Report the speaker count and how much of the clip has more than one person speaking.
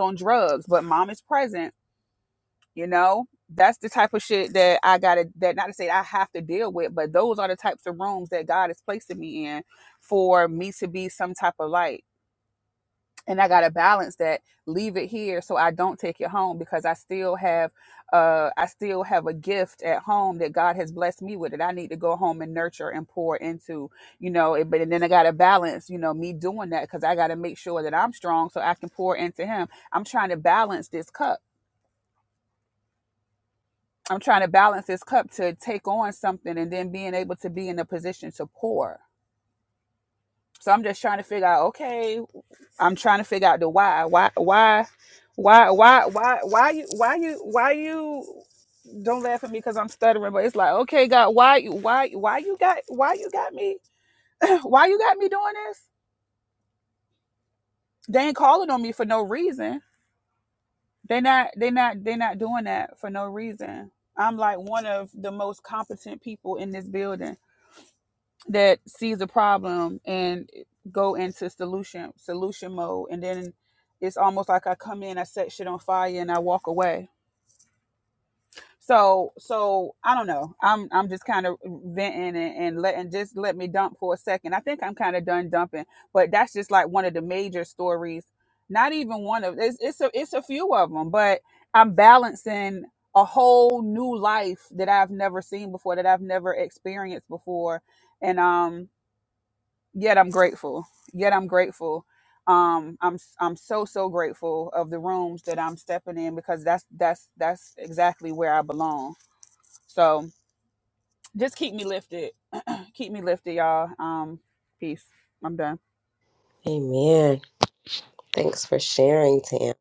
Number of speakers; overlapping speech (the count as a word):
two, no overlap